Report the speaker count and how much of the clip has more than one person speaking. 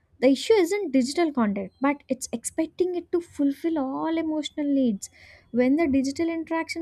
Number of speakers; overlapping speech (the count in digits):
1, no overlap